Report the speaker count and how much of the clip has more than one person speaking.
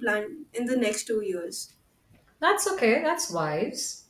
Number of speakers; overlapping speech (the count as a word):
two, no overlap